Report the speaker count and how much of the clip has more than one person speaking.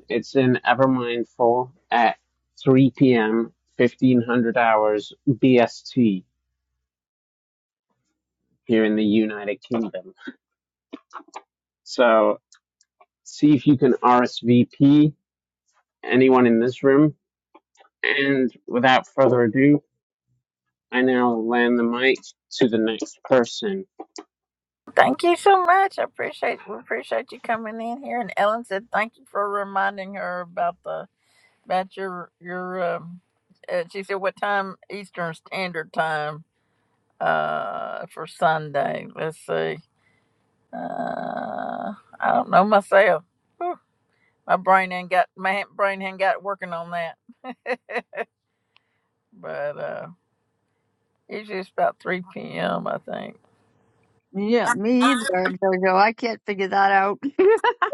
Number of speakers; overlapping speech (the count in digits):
3, no overlap